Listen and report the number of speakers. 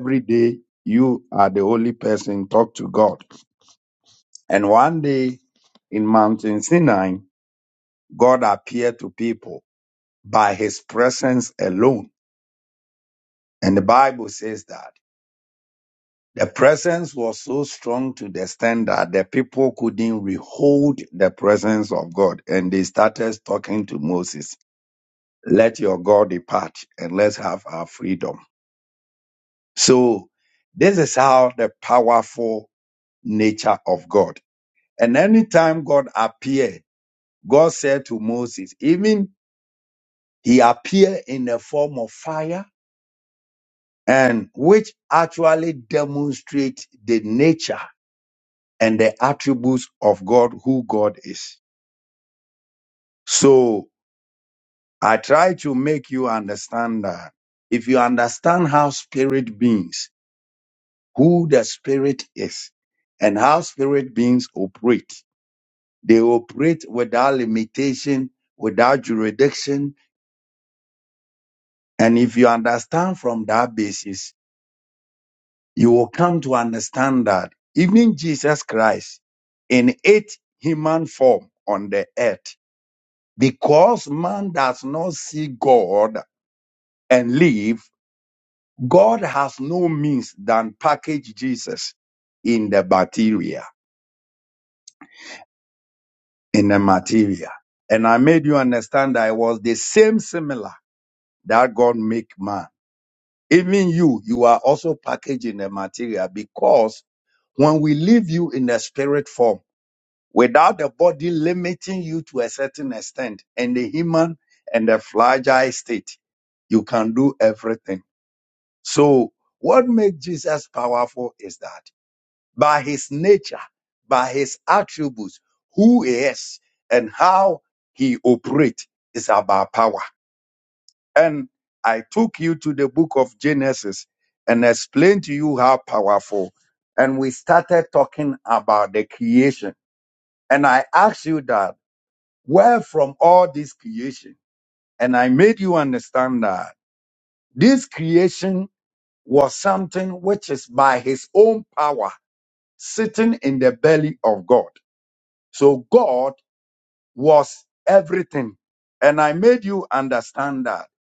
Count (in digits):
1